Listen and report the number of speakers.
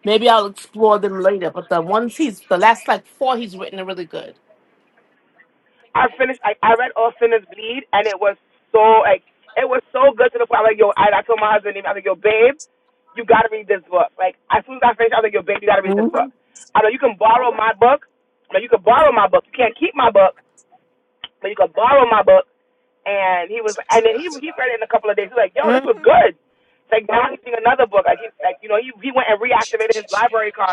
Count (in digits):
2